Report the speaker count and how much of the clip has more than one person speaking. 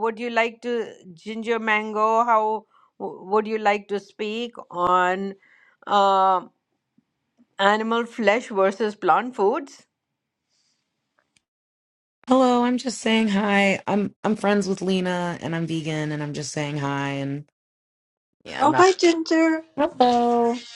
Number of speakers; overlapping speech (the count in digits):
3, about 1%